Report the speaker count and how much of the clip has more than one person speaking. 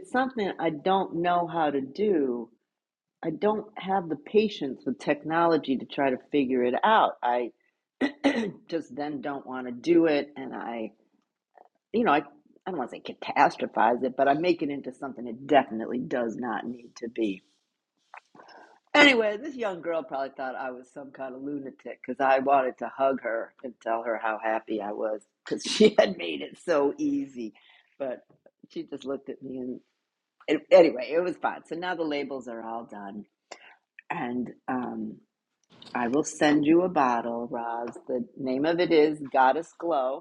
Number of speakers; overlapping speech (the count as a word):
one, no overlap